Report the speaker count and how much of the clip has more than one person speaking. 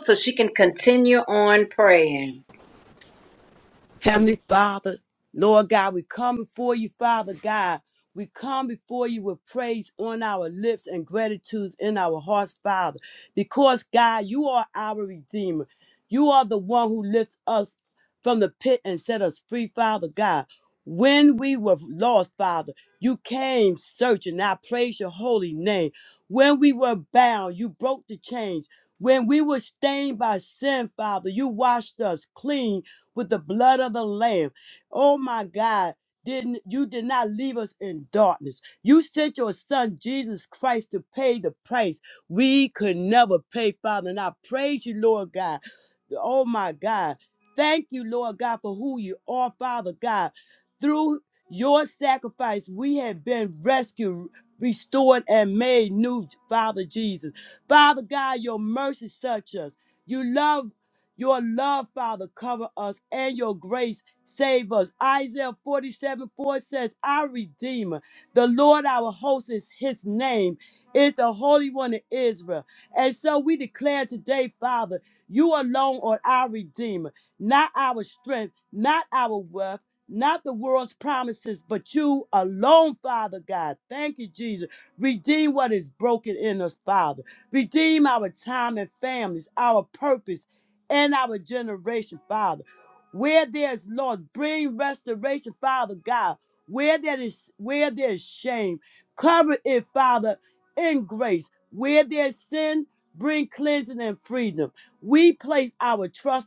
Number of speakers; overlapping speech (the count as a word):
two, no overlap